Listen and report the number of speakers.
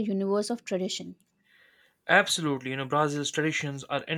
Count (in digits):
2